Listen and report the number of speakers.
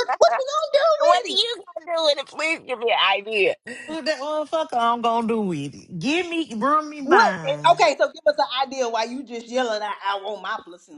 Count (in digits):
3